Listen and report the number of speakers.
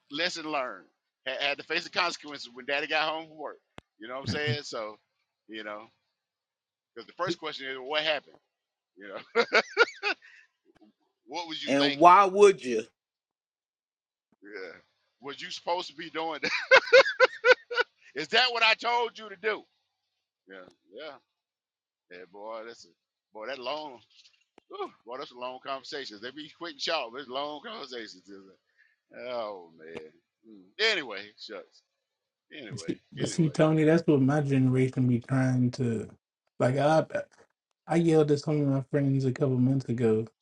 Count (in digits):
3